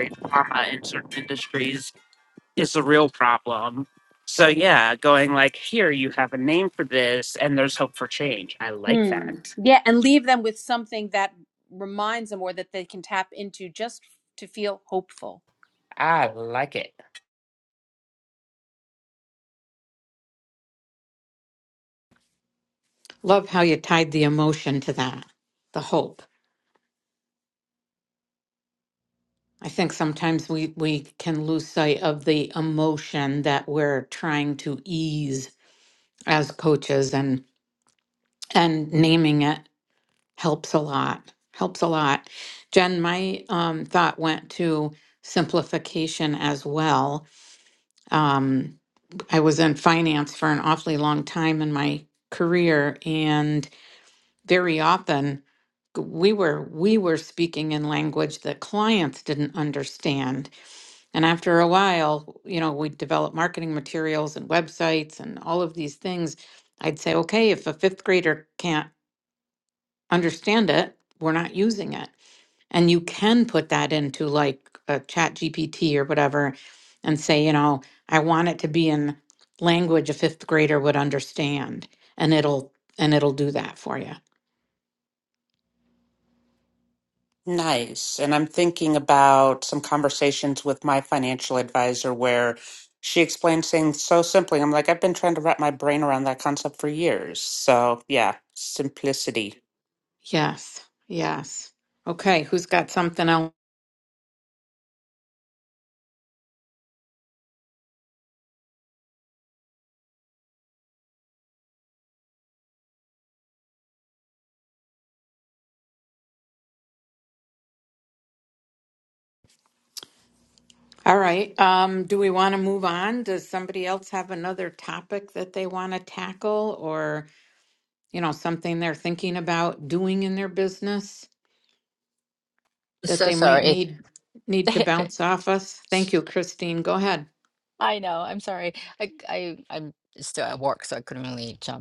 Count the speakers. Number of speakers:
4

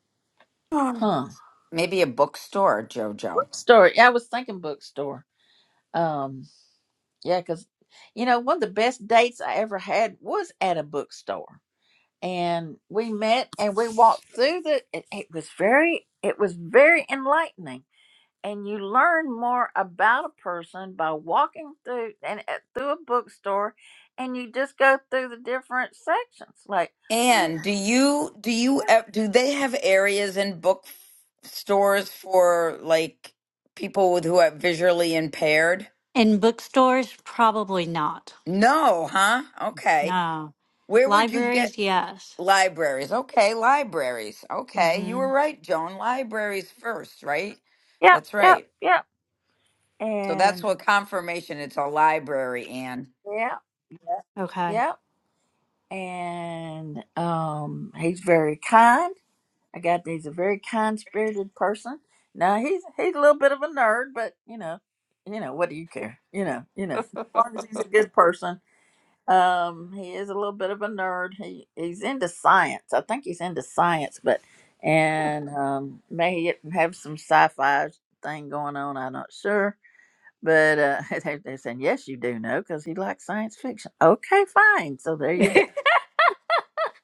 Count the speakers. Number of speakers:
3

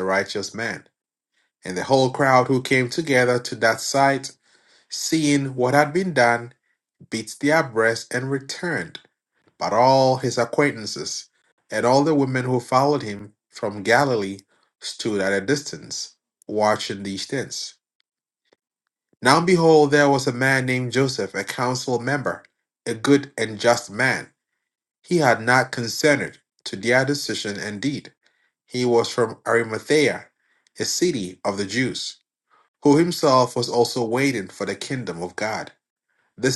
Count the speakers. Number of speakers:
1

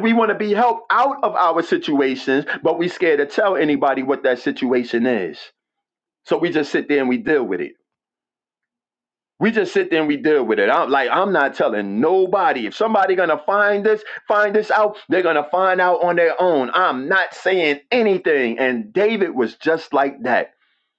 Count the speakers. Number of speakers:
1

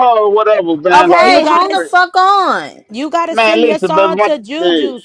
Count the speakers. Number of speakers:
3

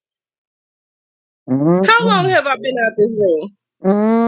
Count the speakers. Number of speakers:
2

